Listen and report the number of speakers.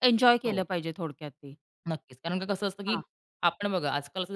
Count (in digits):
2